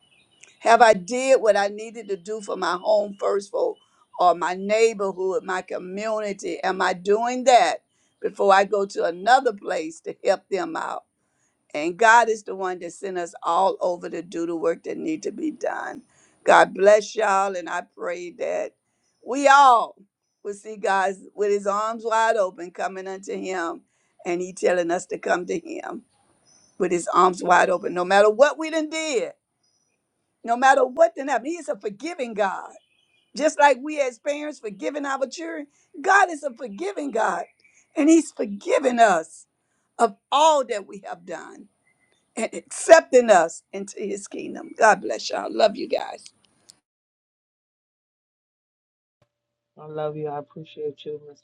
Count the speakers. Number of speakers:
2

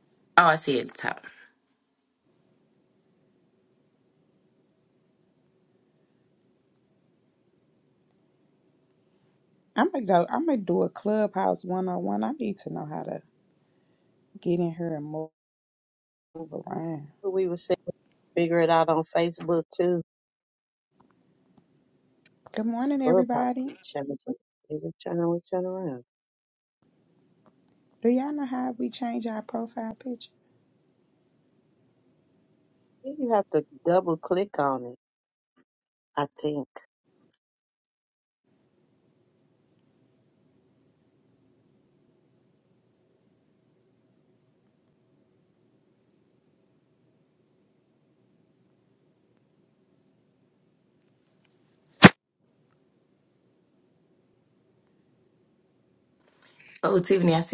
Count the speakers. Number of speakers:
3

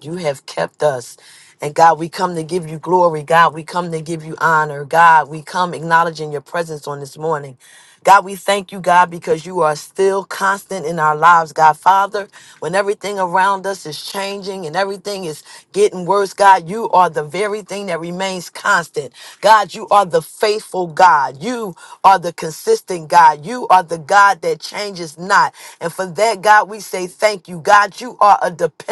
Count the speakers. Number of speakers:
1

